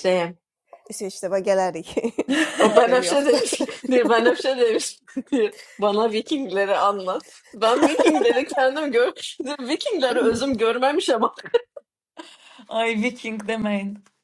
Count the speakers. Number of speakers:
3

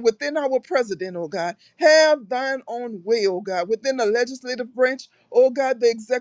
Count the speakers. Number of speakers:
1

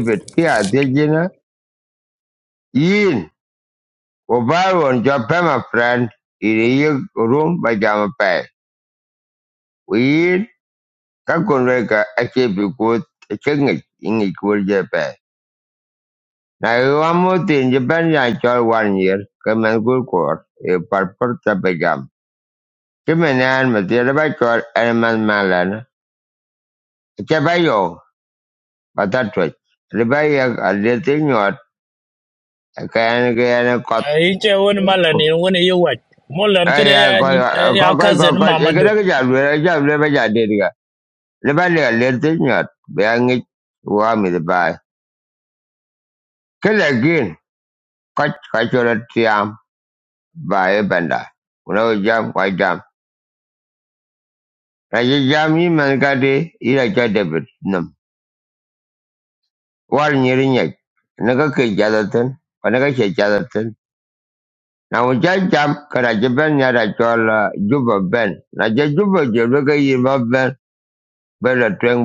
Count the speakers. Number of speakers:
2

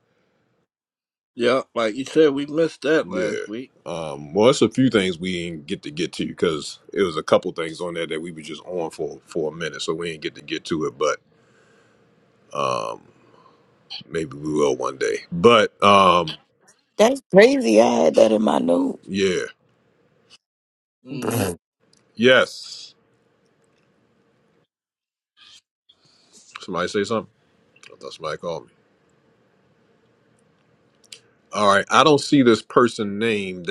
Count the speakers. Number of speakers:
3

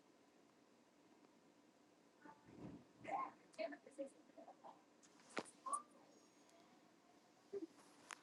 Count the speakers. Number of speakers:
0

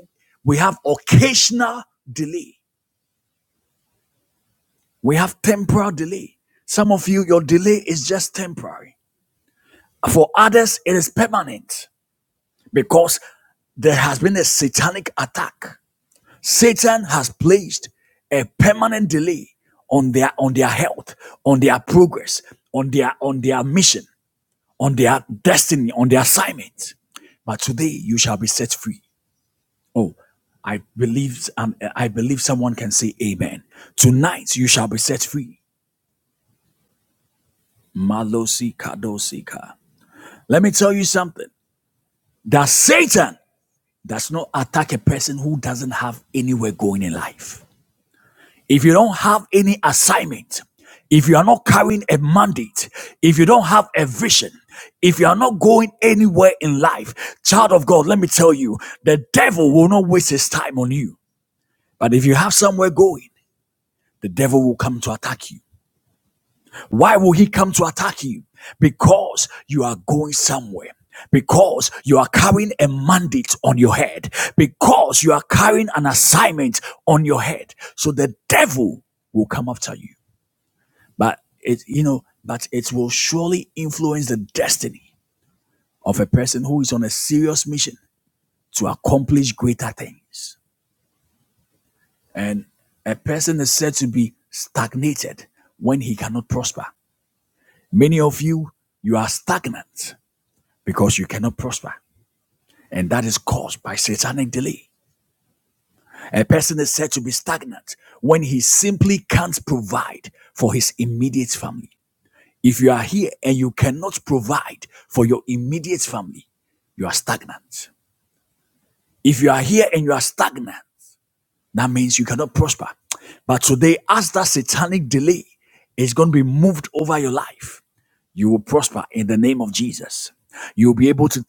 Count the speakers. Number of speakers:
1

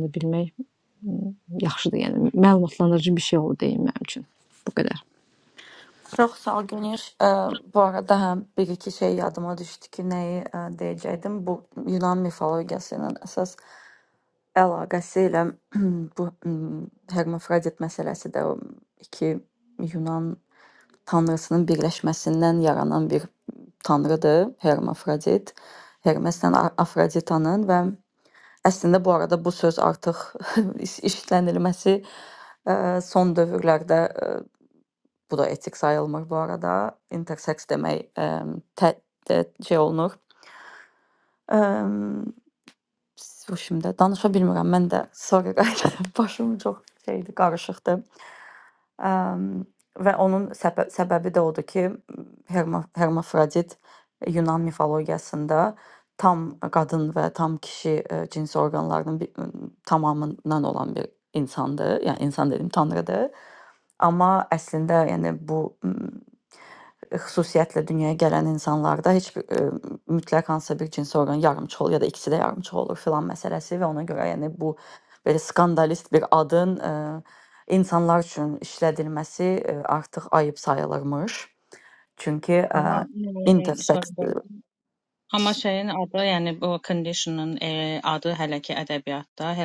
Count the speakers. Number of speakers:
3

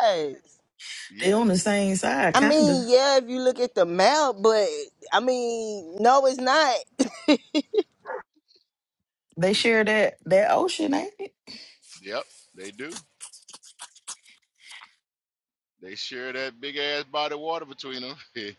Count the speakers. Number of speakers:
3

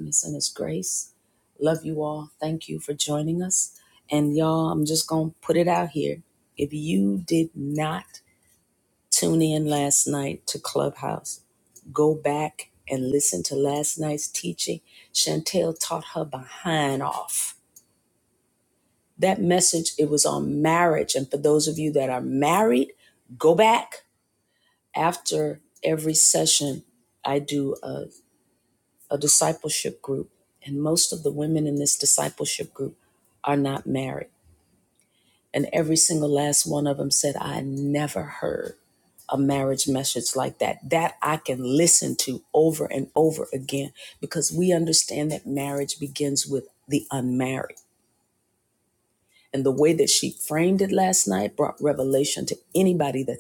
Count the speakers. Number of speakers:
1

